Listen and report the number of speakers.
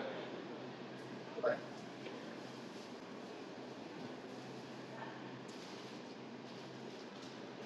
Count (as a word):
zero